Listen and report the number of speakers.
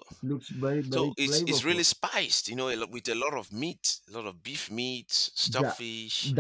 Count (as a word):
two